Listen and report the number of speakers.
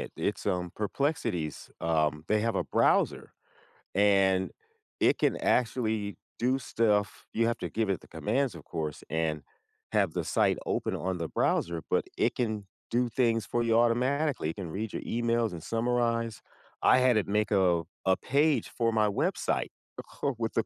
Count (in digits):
1